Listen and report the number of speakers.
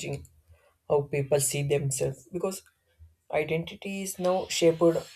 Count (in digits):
1